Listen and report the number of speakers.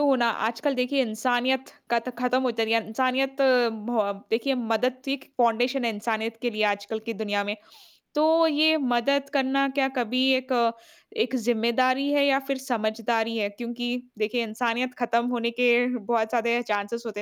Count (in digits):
1